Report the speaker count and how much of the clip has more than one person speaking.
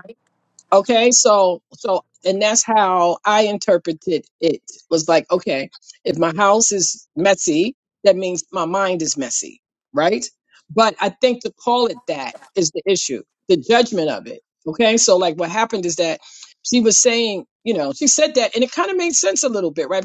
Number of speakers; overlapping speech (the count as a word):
one, no overlap